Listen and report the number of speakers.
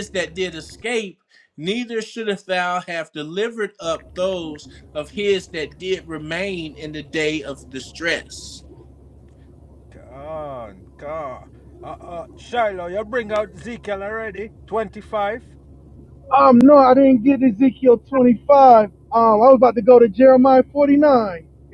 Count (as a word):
three